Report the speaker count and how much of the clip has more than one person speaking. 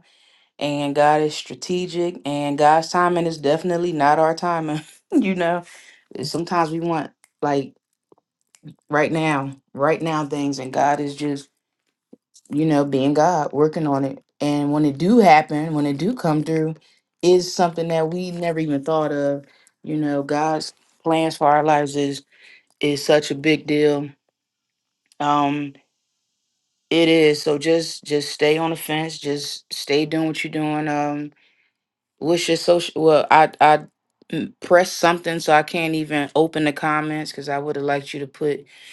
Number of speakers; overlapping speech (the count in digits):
1, no overlap